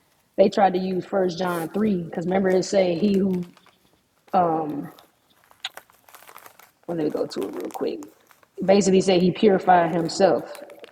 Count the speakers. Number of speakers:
1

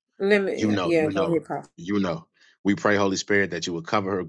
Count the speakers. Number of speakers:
2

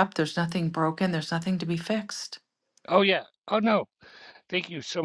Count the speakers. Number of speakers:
2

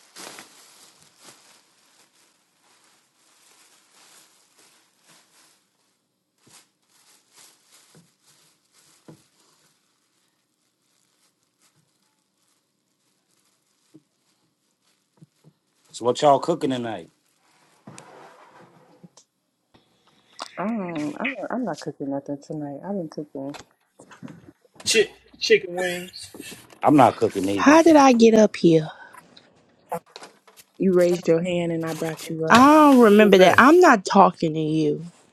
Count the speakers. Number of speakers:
4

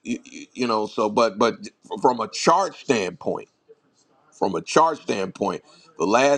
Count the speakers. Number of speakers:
1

